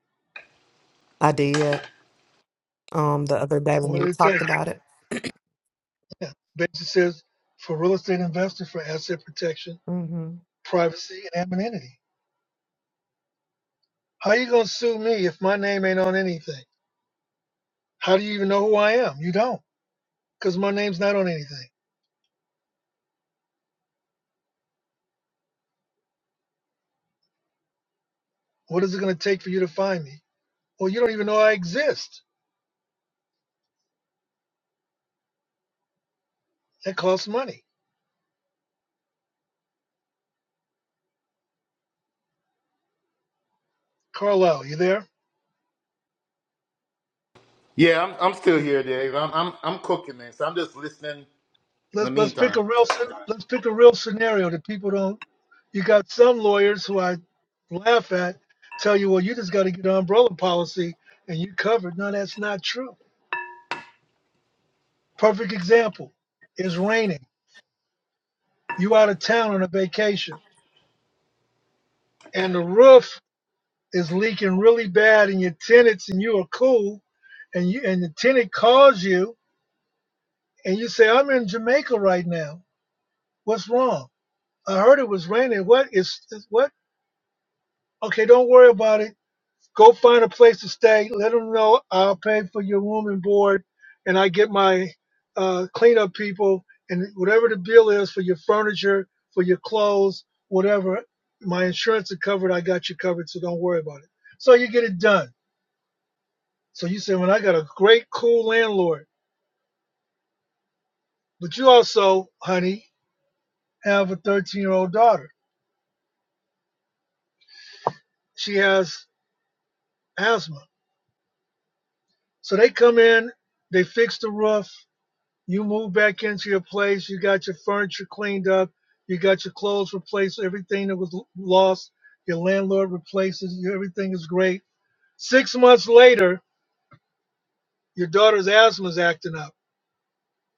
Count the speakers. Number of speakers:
3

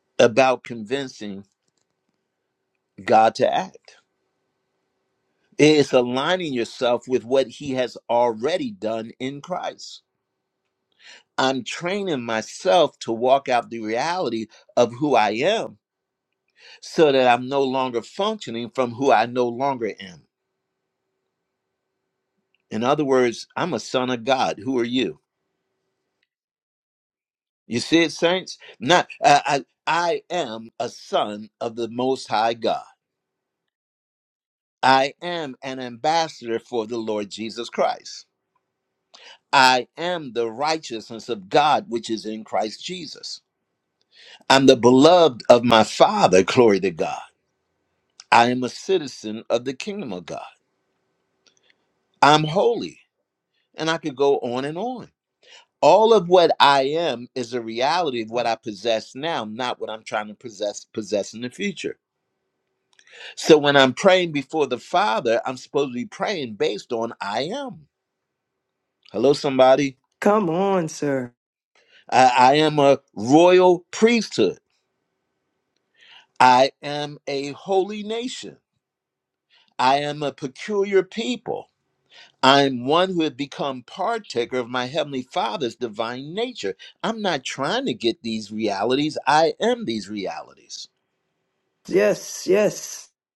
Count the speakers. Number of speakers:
2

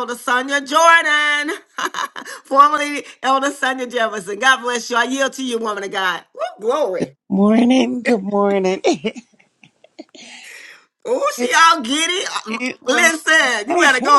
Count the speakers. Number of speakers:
2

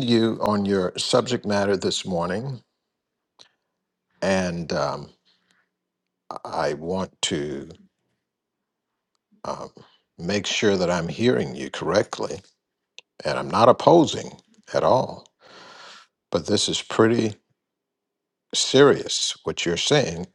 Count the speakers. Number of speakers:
1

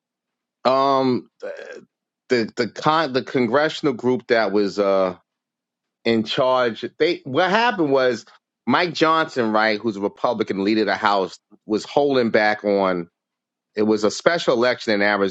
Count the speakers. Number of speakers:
1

